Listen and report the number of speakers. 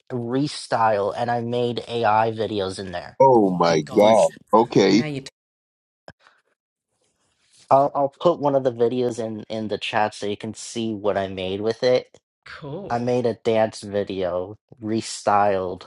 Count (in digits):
3